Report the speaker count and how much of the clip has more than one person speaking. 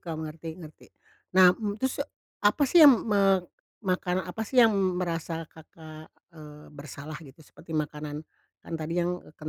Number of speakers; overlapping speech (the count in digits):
1, no overlap